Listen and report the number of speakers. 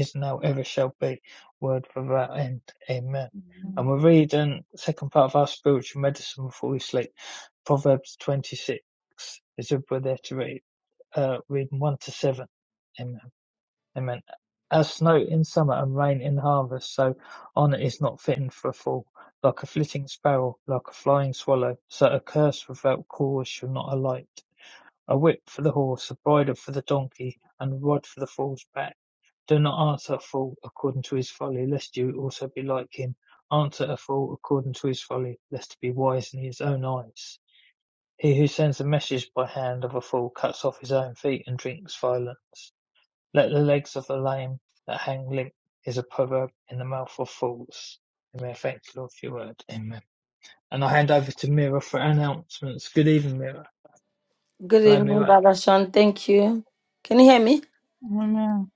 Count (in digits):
3